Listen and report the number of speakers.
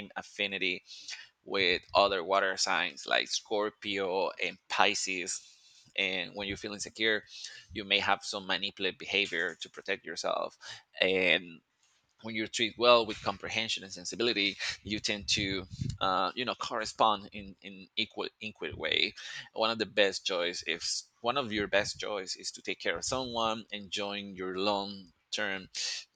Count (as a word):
one